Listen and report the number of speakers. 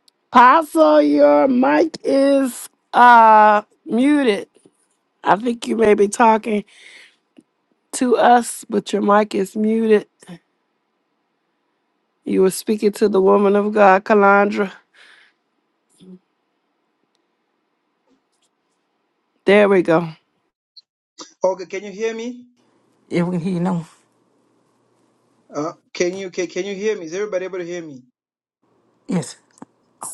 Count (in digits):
3